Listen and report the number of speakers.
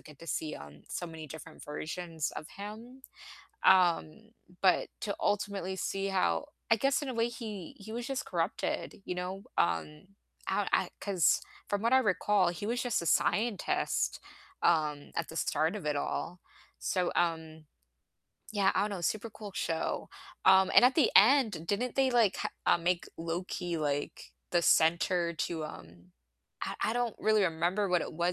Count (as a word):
one